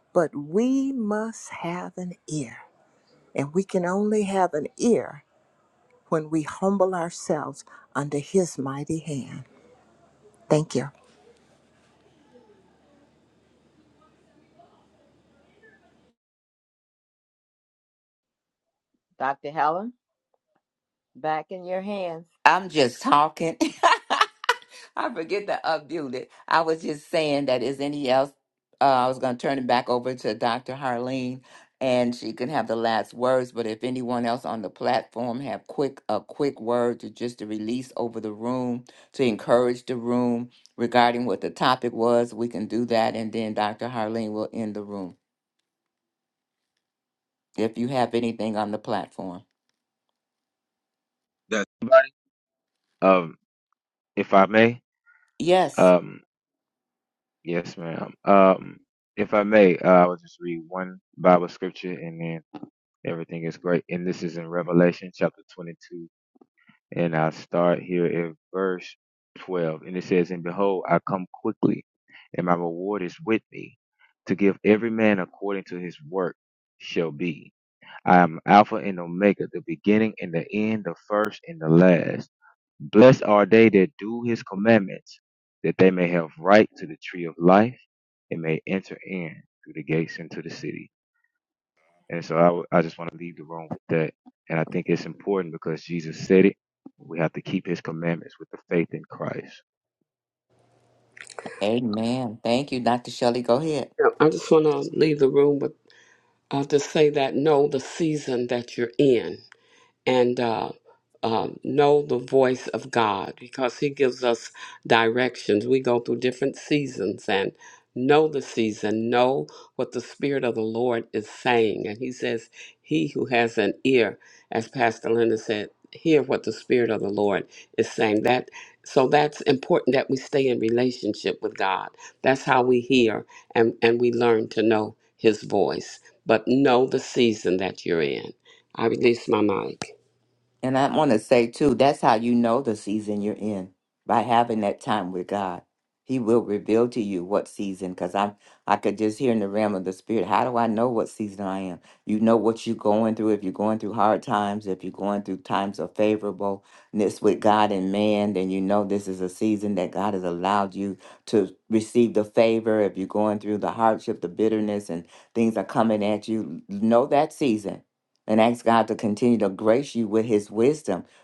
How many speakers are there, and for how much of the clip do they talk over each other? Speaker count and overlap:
5, no overlap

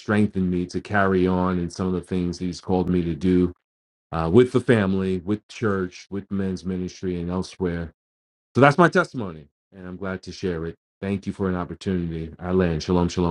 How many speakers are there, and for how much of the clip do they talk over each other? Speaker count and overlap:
1, no overlap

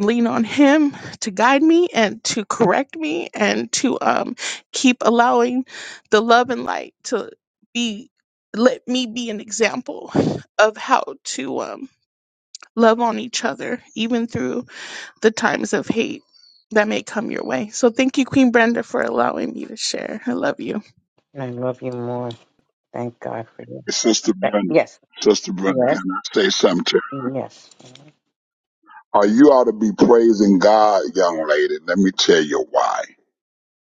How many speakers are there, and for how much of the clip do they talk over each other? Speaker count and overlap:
3, about 2%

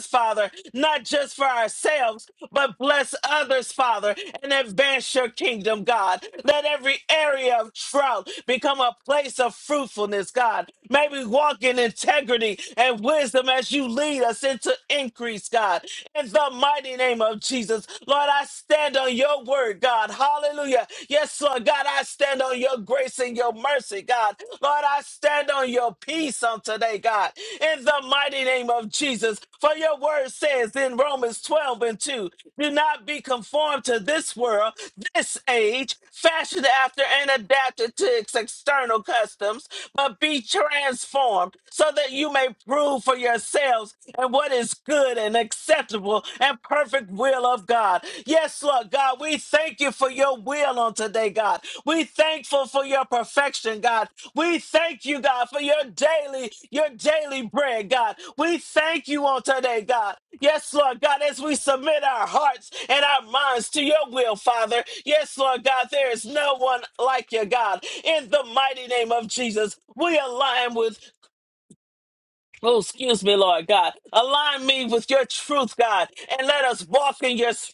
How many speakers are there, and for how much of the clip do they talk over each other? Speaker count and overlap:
1, no overlap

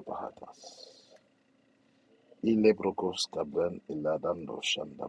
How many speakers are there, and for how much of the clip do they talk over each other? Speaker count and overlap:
1, no overlap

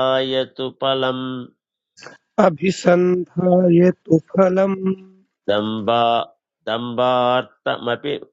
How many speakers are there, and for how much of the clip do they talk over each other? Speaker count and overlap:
2, no overlap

